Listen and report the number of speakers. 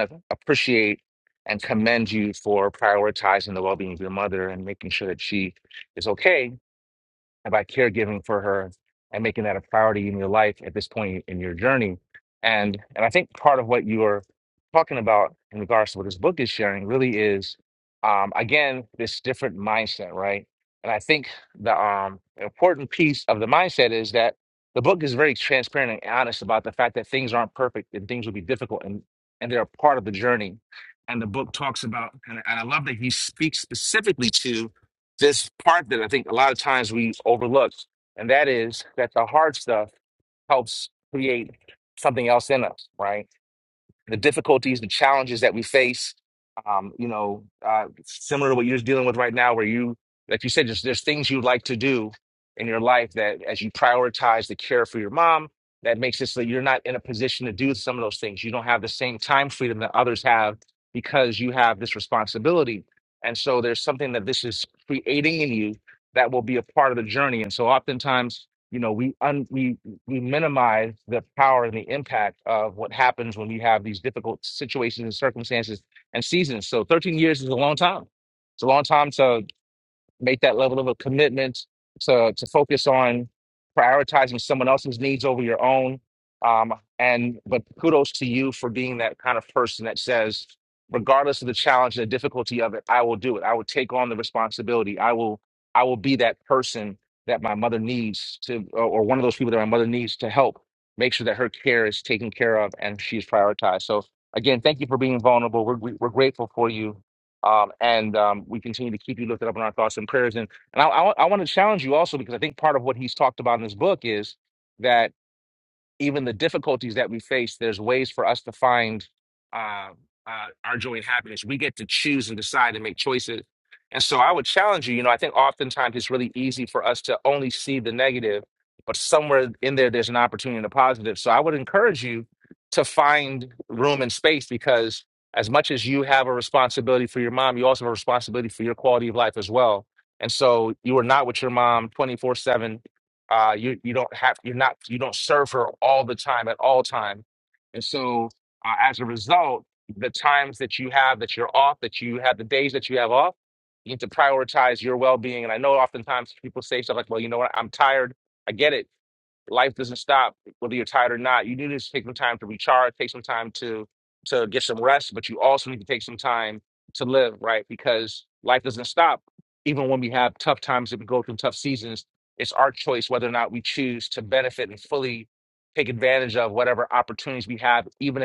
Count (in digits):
1